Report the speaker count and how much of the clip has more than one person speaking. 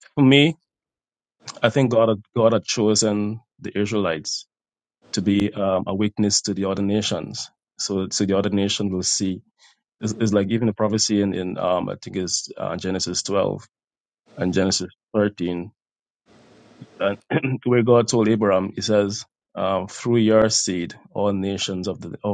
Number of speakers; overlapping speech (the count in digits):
1, no overlap